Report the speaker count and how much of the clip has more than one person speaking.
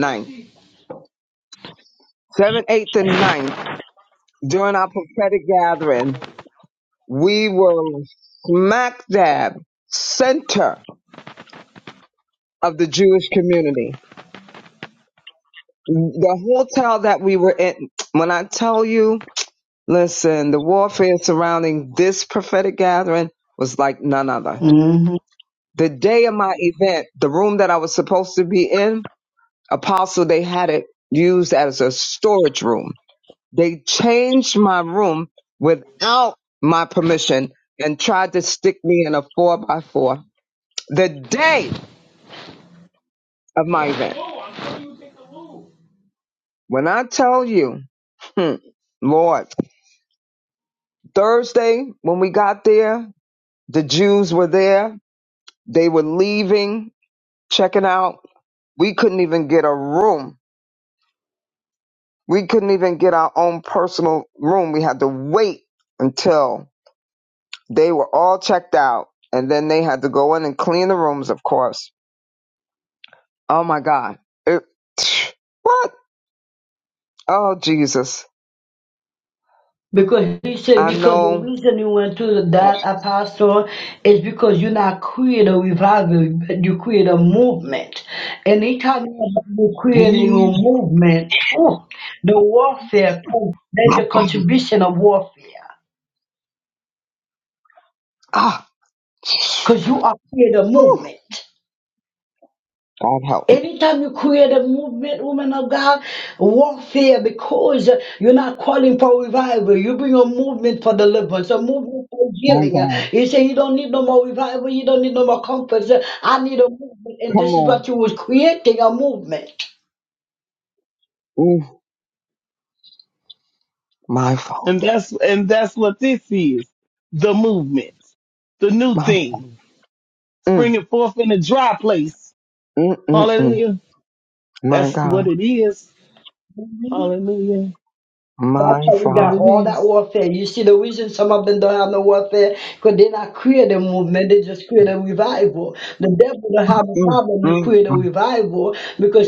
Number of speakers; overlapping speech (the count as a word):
three, about 4%